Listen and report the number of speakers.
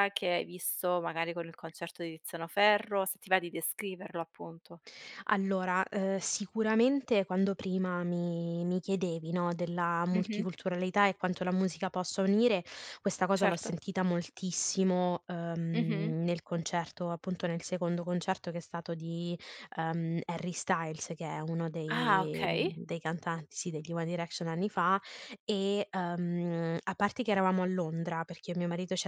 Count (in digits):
2